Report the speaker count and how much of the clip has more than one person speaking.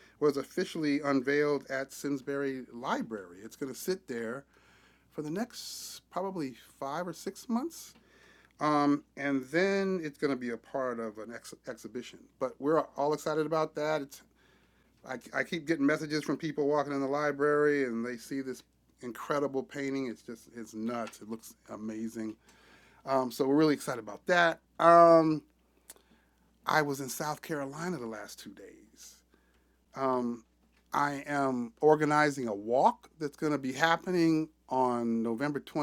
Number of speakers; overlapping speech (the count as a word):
one, no overlap